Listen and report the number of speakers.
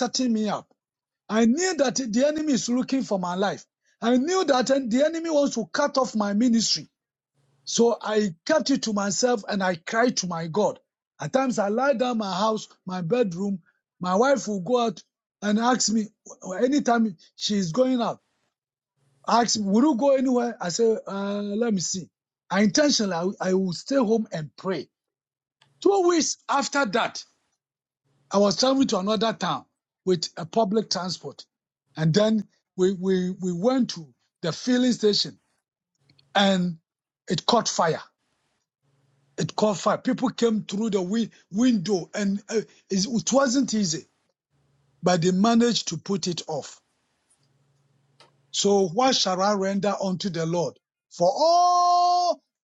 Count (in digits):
1